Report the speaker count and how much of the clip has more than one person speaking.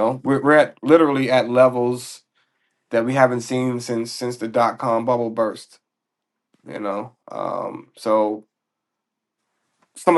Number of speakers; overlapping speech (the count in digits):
1, no overlap